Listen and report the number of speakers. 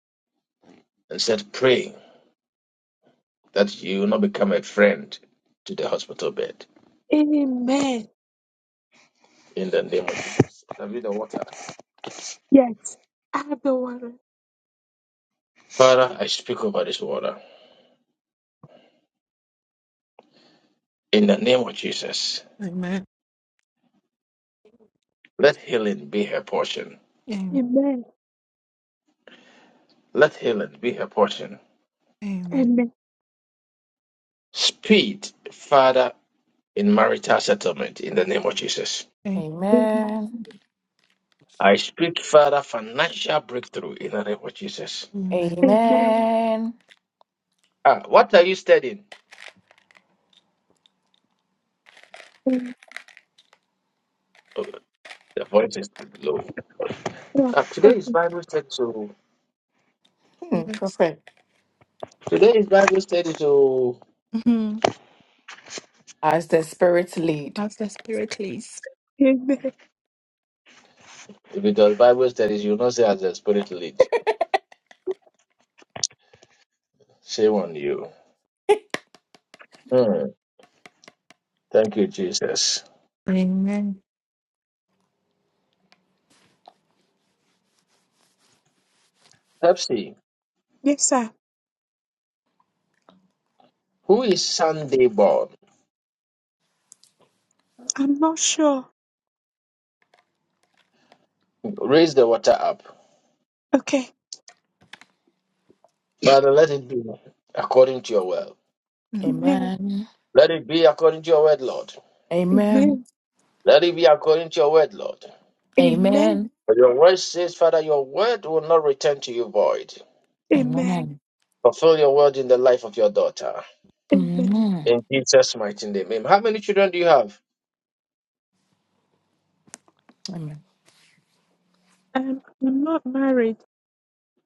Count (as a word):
four